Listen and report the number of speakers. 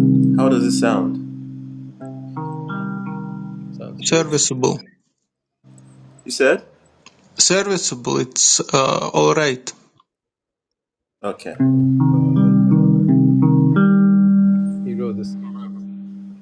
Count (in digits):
3